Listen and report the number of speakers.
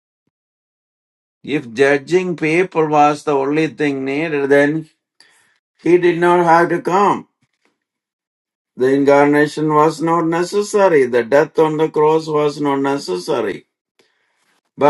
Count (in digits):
1